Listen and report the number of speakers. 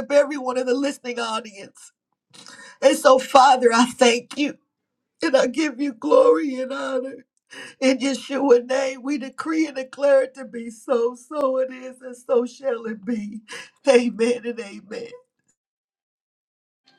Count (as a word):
one